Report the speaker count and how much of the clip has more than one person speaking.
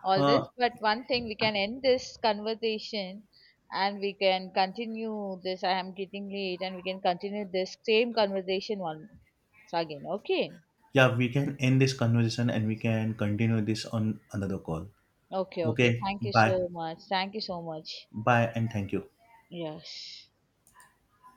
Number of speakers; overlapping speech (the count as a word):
two, about 7%